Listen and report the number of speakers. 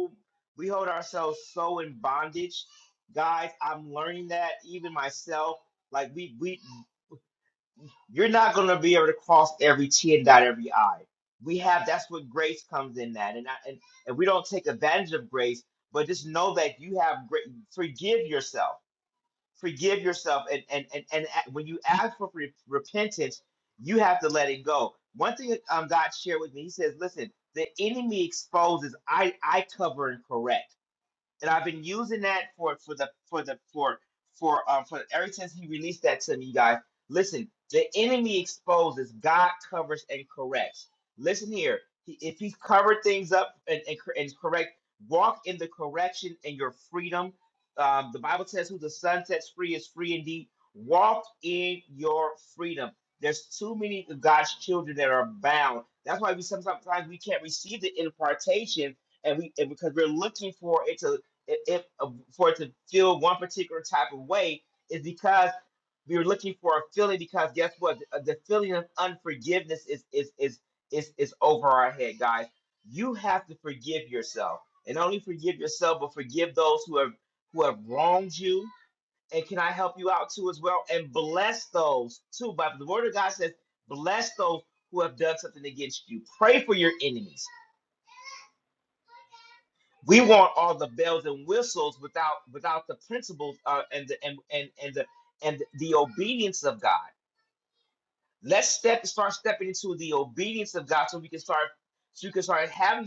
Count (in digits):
1